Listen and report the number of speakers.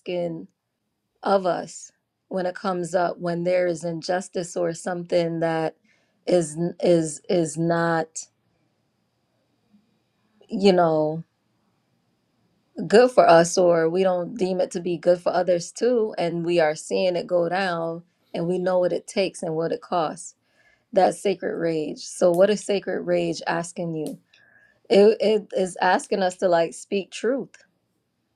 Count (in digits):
1